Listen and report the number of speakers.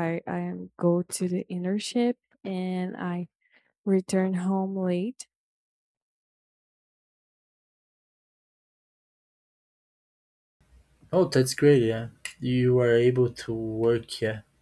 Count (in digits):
2